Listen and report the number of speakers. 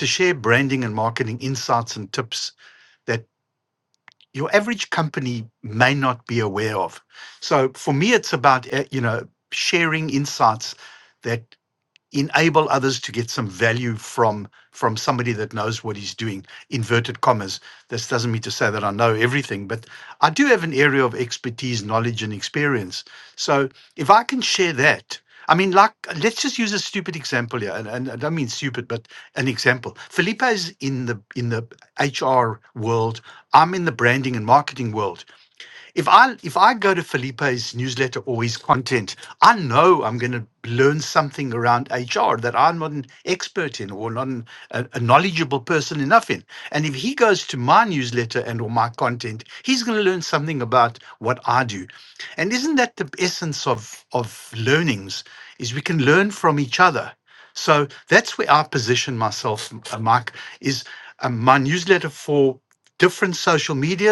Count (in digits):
1